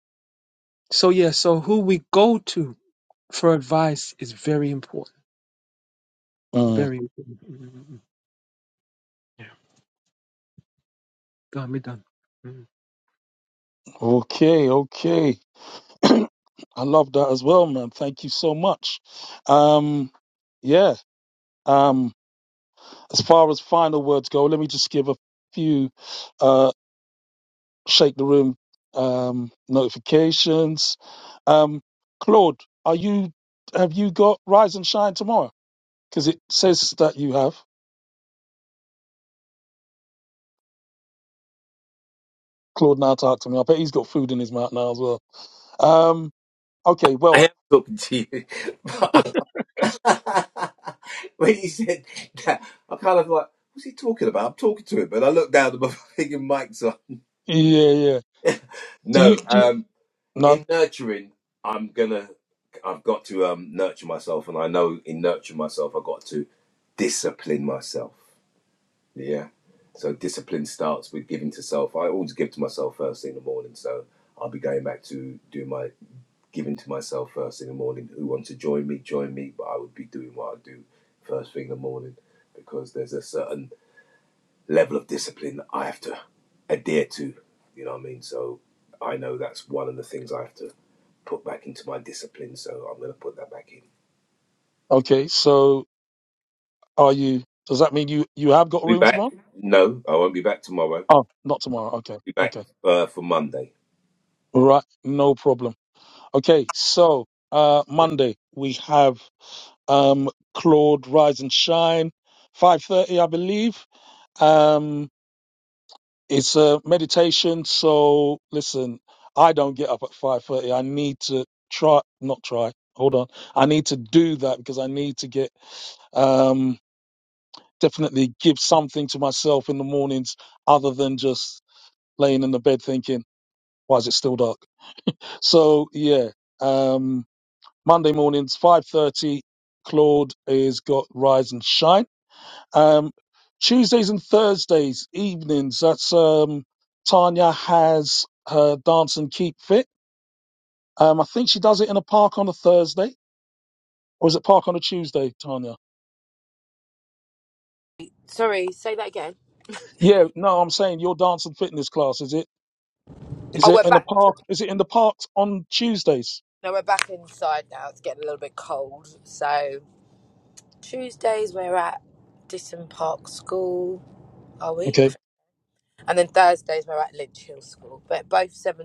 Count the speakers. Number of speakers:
4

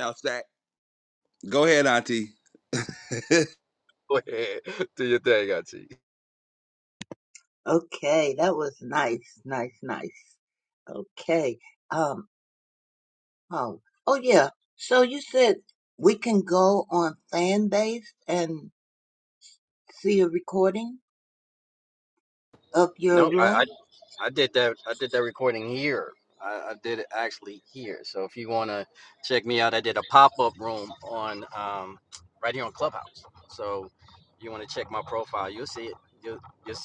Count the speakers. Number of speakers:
3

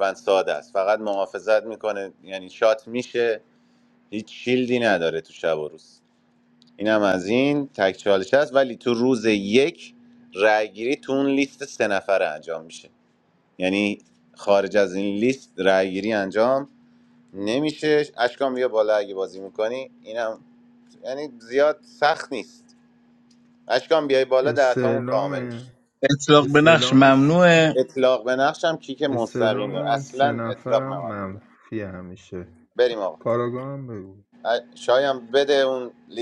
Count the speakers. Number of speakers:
3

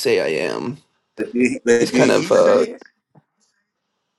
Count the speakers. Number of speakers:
2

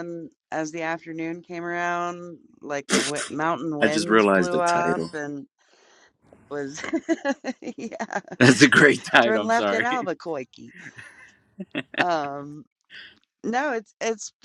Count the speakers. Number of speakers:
2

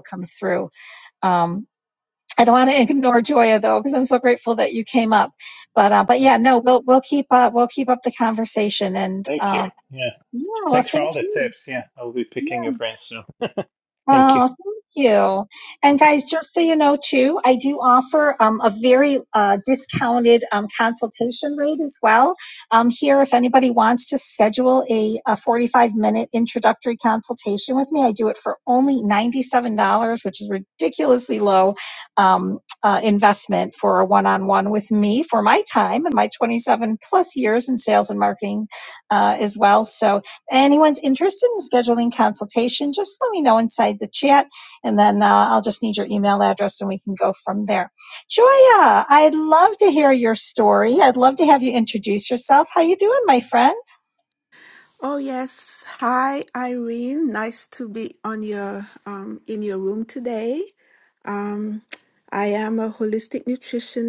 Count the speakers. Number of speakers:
3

